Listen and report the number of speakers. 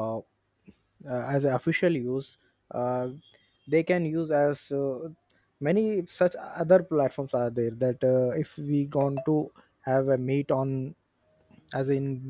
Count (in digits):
1